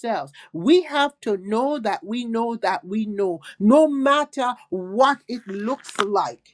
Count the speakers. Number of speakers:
1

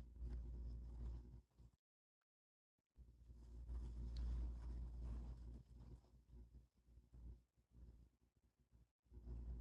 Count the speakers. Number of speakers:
0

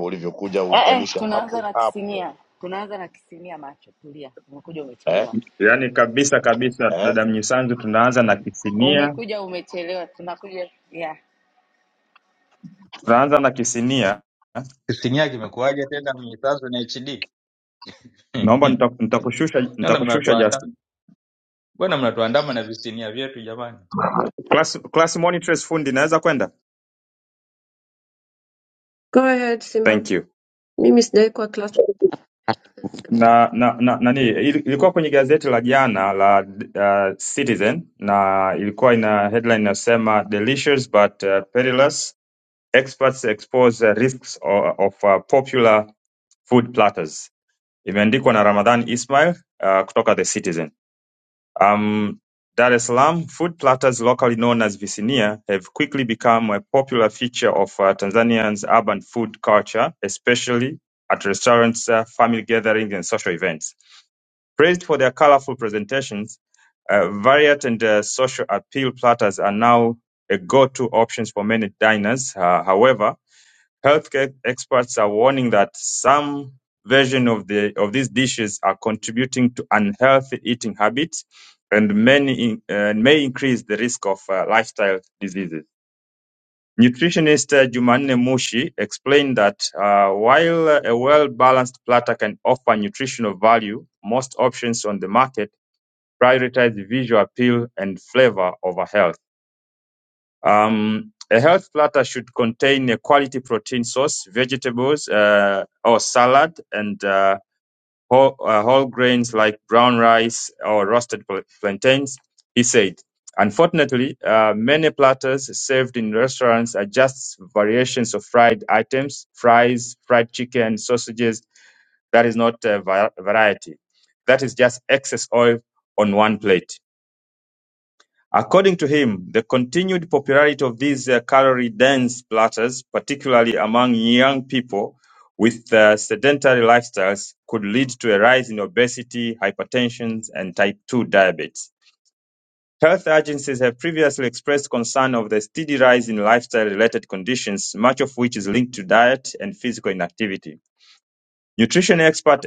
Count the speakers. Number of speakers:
5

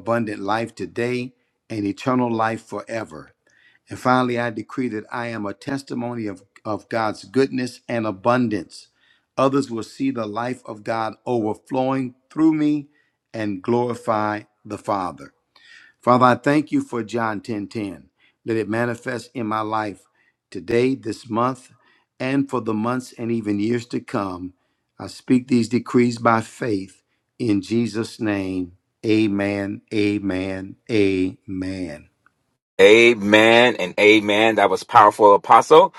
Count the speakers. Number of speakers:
2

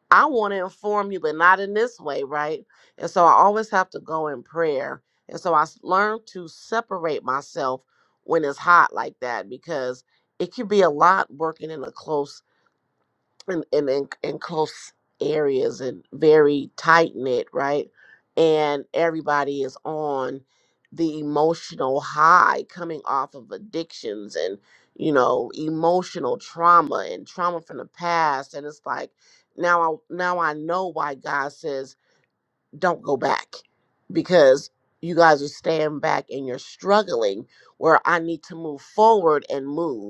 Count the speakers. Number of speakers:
1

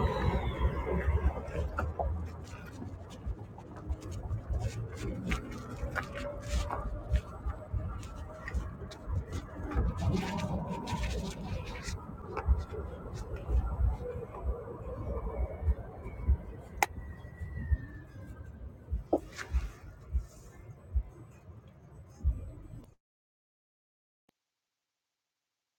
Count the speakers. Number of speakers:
0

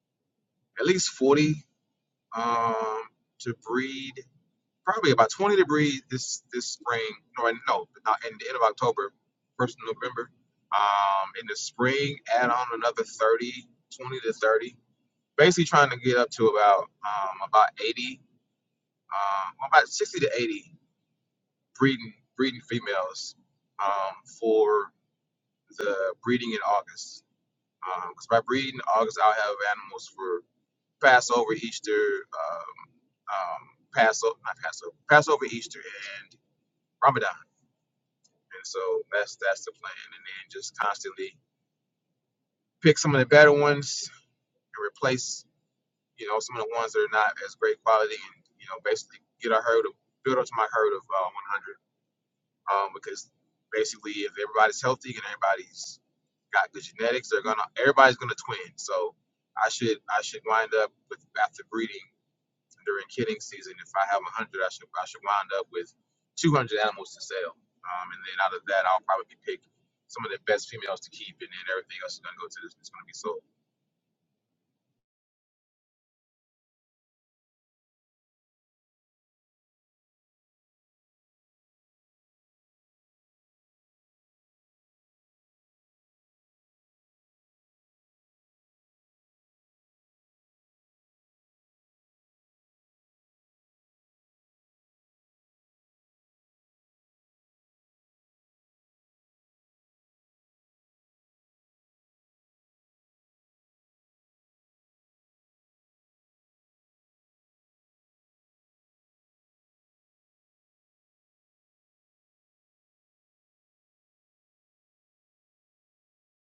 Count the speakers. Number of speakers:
1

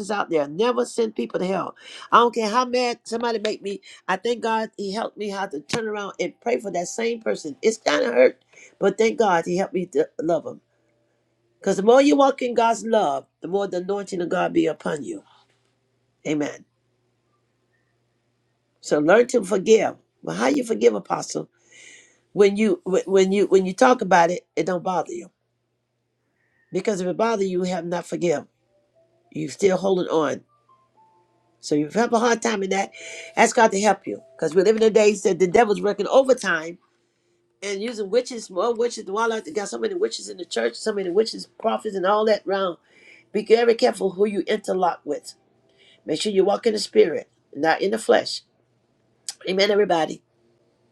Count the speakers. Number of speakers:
1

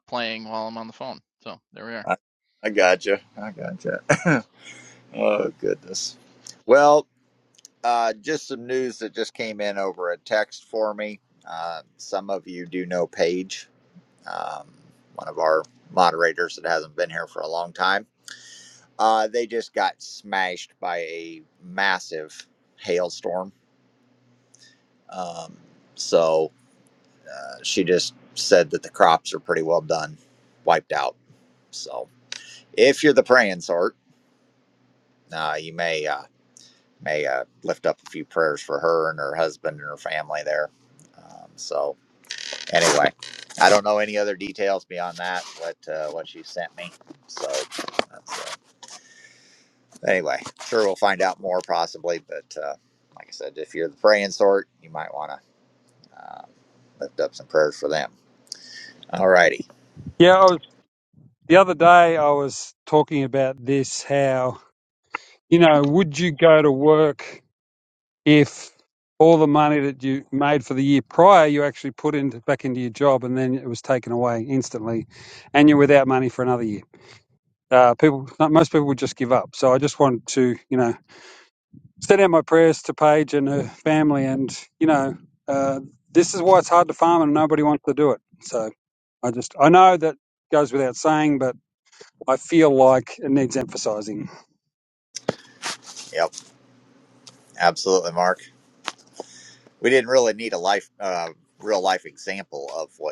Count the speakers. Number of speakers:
3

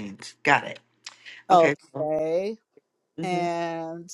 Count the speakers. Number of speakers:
2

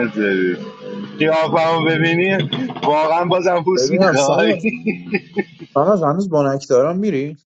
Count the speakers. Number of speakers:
2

